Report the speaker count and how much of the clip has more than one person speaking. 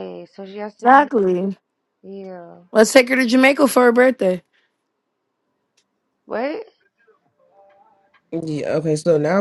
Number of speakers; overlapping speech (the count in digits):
3, about 3%